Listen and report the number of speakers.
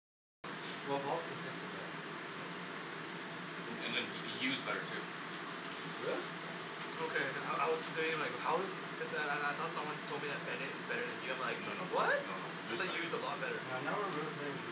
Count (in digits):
3